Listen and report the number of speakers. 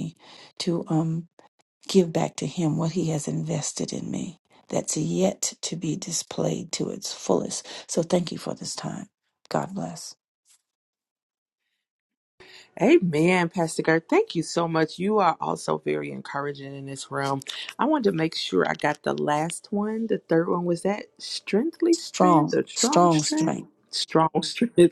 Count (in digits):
2